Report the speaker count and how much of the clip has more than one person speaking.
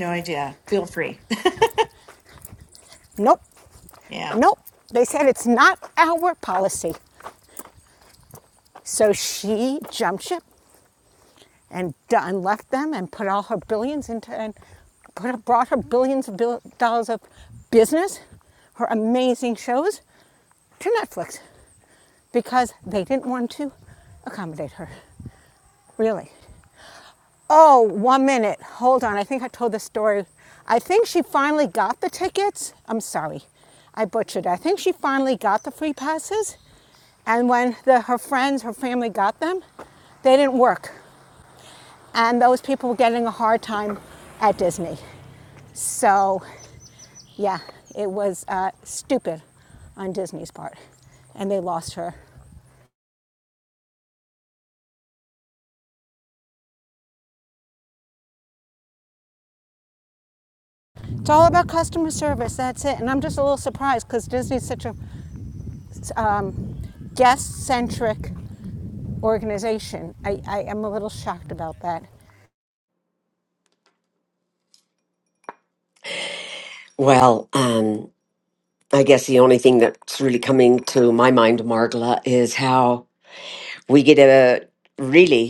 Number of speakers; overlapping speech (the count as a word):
three, under 1%